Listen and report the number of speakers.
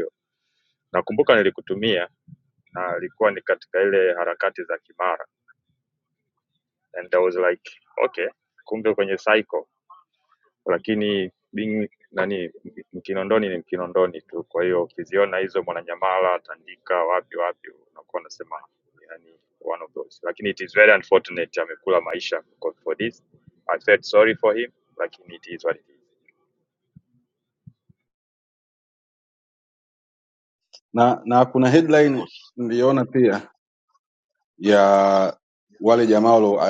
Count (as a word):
two